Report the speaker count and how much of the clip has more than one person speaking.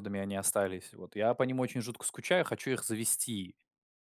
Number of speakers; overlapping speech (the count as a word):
one, no overlap